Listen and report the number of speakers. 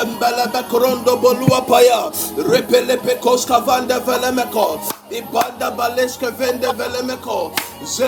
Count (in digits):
1